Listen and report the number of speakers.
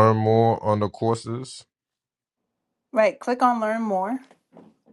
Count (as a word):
two